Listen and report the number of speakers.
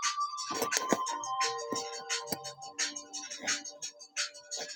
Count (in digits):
0